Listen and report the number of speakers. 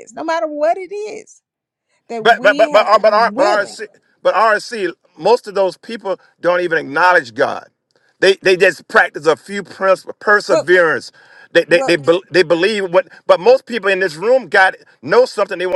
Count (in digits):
2